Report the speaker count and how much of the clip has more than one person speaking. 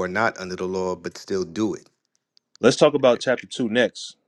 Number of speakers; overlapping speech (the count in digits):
2, no overlap